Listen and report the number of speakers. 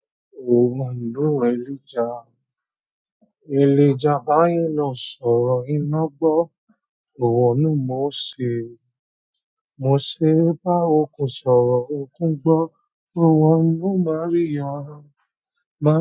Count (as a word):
one